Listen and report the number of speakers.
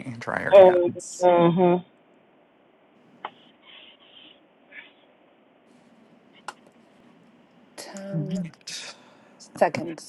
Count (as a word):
three